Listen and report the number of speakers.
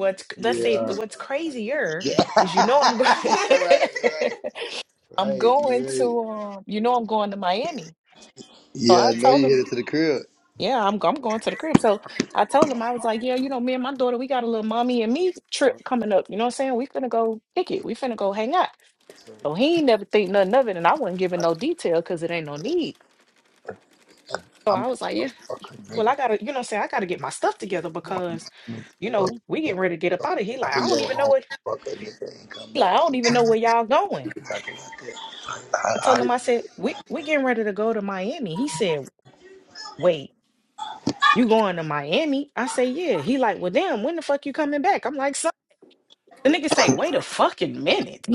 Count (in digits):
2